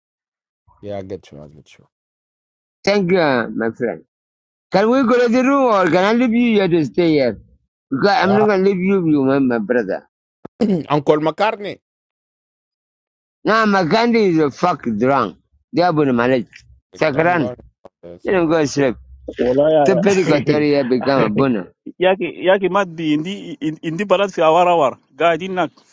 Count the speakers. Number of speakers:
3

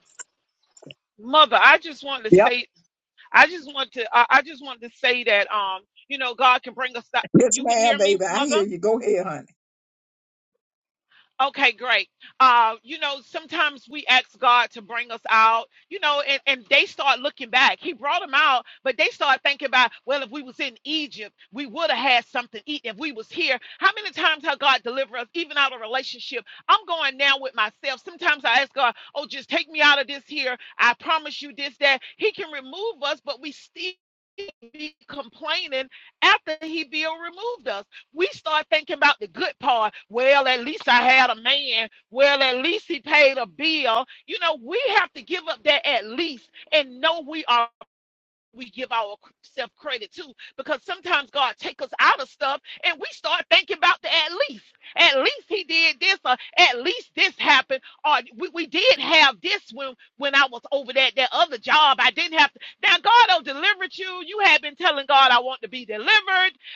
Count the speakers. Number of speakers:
2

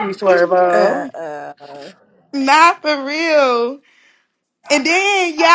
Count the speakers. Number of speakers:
3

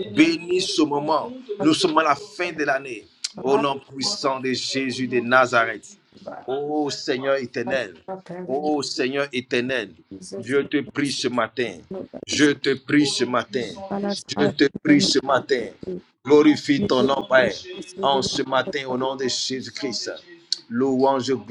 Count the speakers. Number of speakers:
2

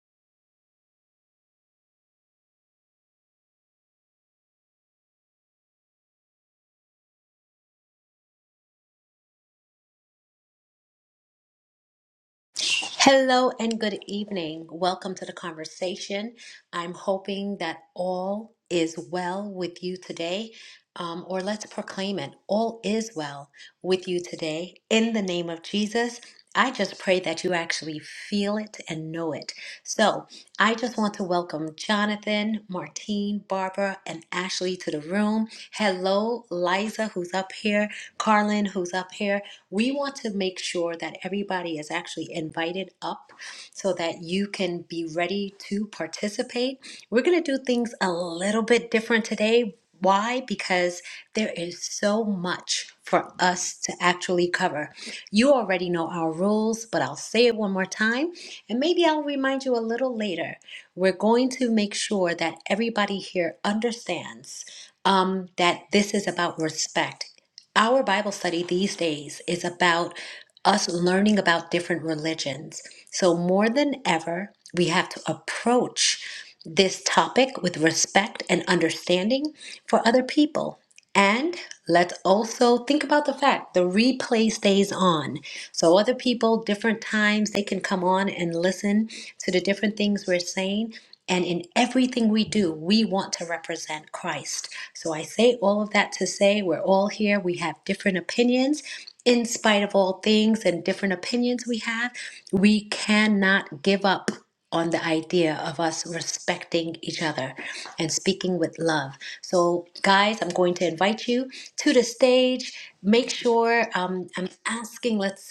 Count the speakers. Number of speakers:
1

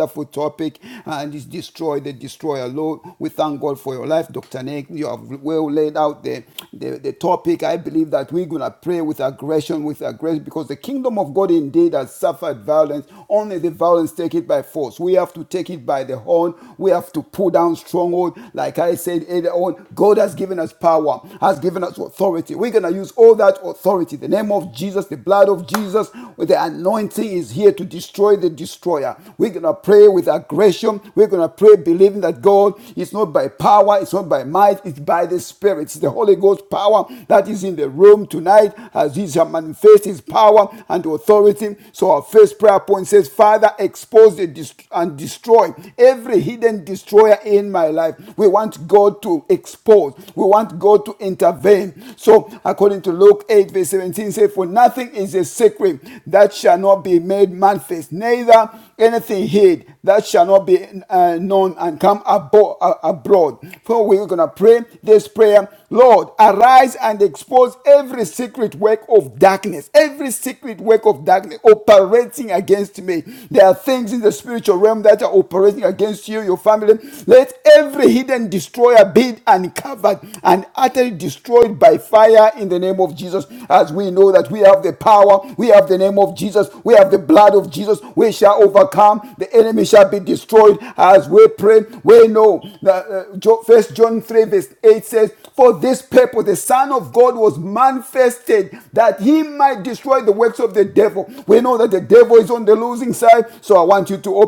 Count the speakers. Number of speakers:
1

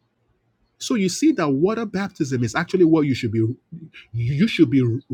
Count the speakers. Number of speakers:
1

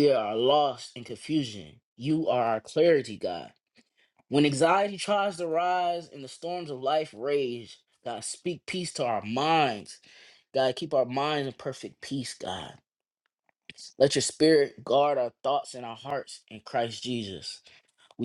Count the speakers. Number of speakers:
1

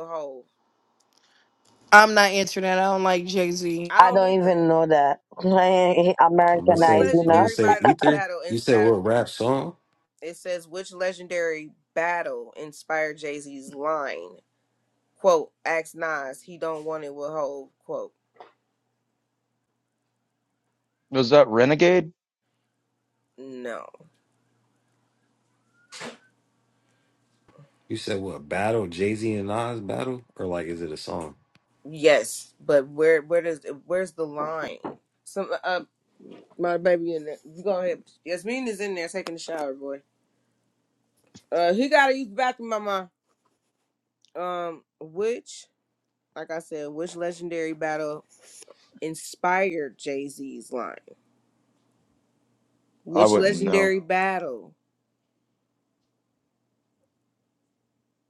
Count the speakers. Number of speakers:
5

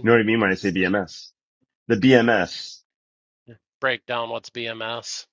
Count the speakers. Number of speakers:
2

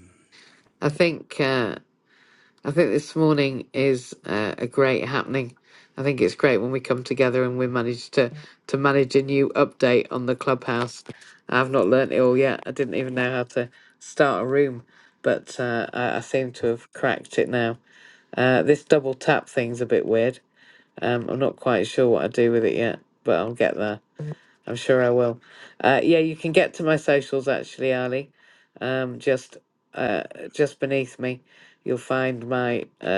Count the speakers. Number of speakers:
1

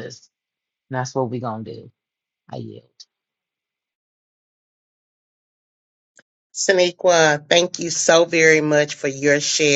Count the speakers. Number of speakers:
2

